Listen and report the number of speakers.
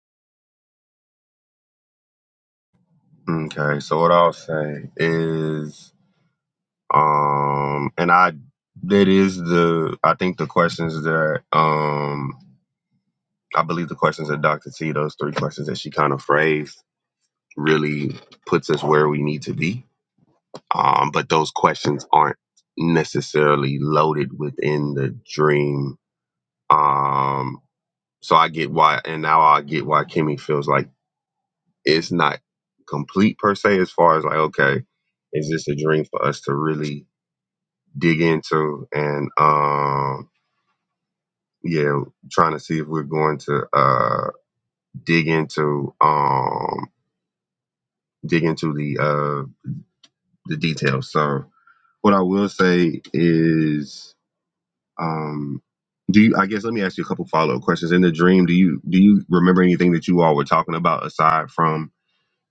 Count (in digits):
1